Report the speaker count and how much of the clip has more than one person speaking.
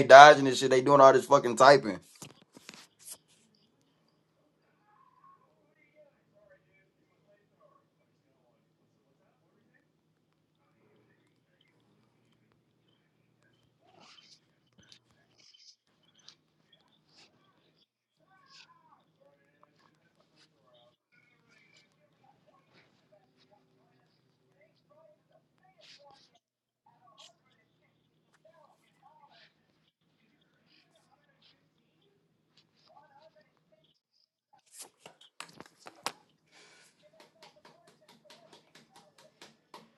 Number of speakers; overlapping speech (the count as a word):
one, no overlap